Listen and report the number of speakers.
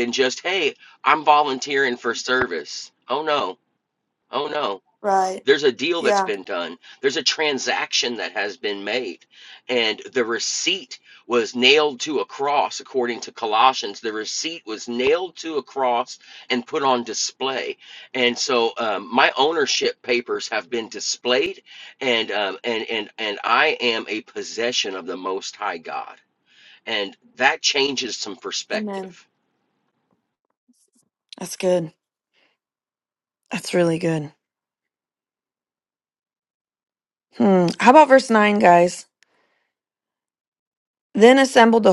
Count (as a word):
two